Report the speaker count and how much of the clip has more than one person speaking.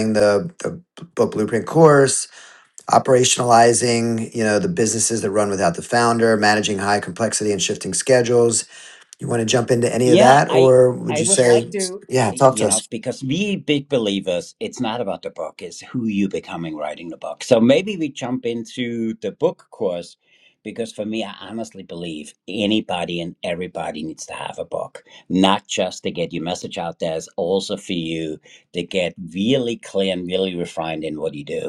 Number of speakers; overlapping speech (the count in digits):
2, about 5%